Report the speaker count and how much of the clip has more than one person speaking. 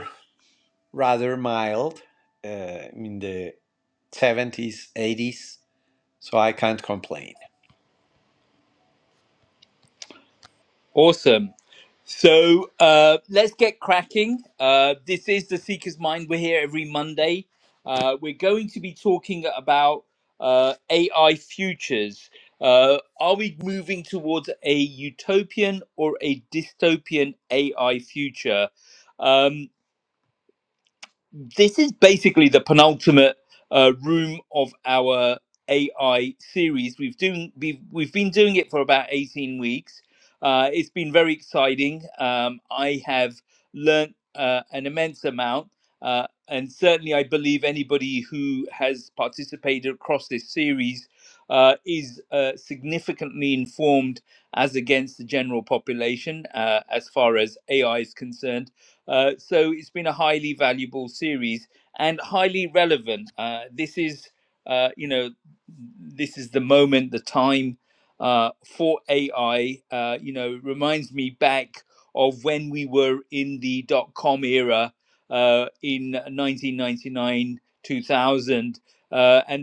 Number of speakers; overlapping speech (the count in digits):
2, no overlap